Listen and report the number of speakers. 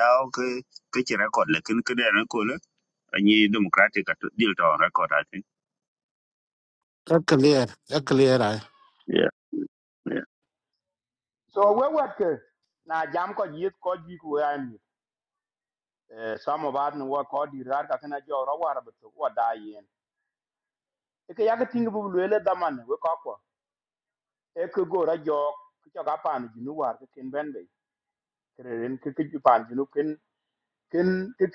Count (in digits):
3